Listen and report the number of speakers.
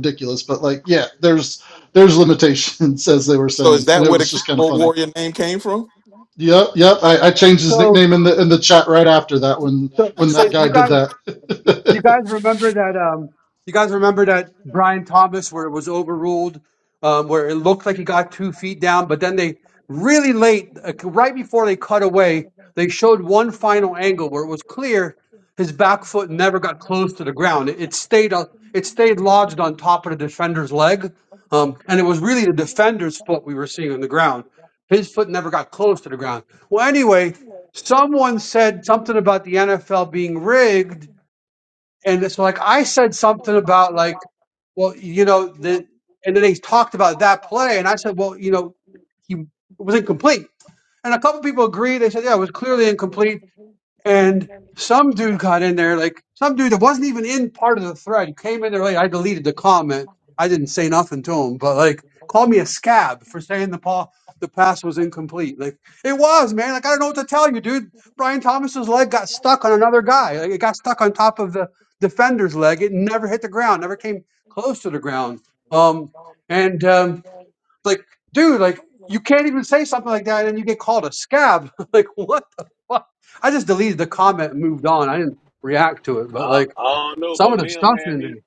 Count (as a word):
four